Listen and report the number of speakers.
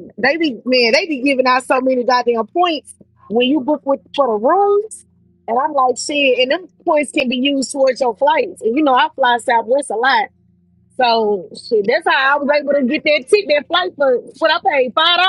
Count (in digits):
1